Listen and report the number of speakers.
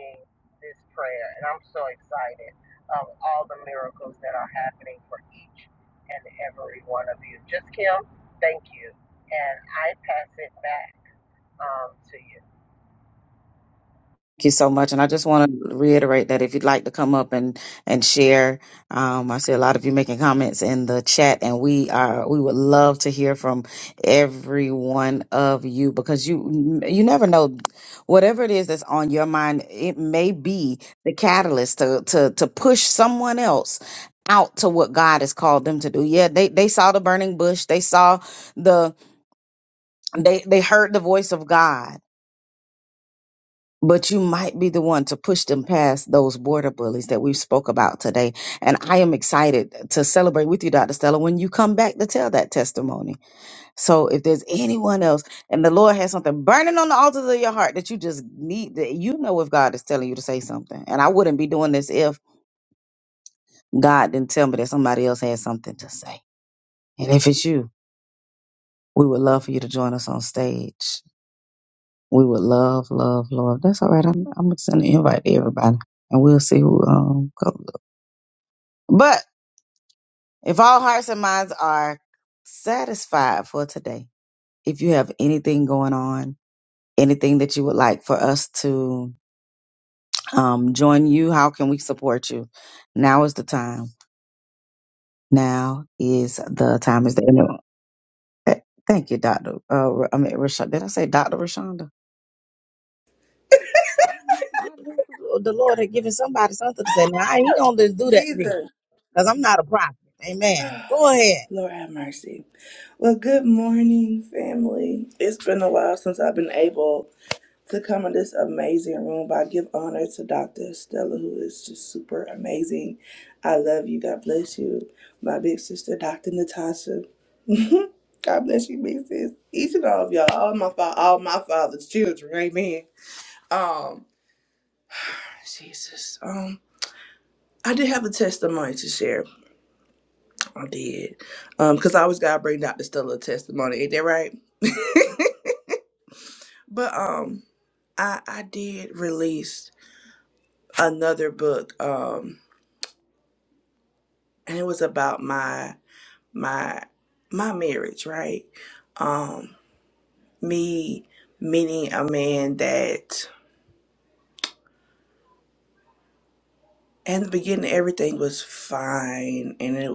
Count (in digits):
3